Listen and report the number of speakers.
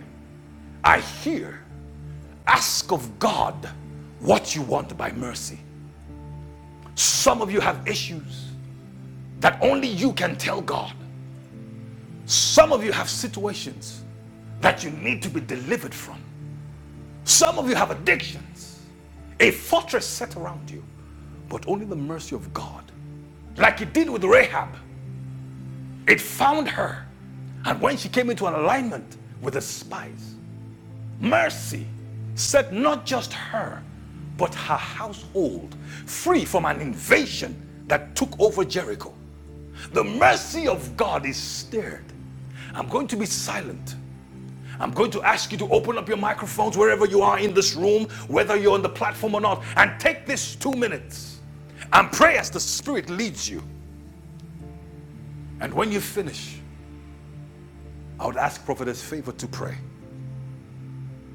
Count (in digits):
1